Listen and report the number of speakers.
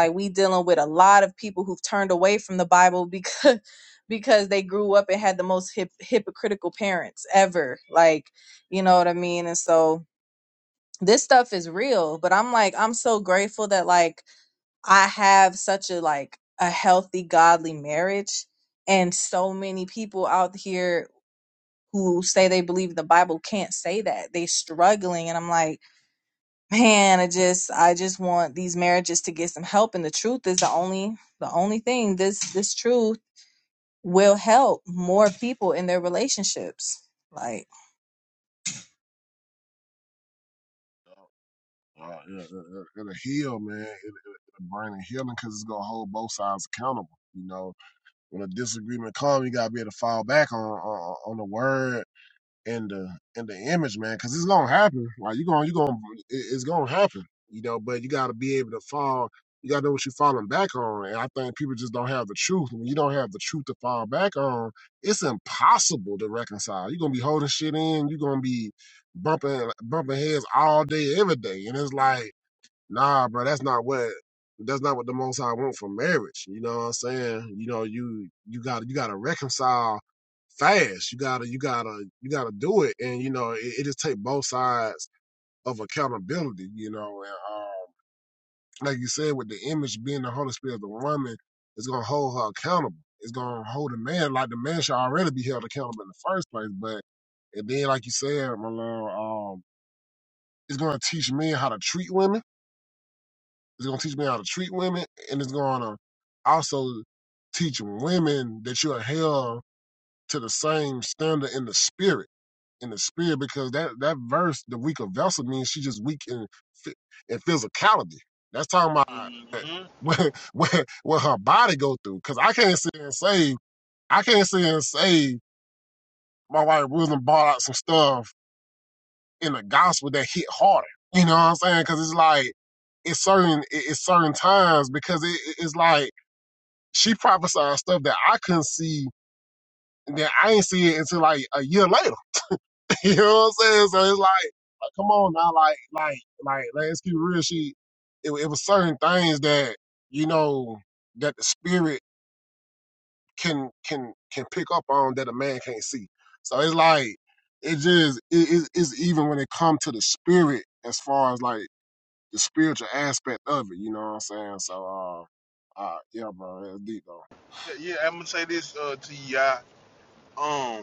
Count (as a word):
three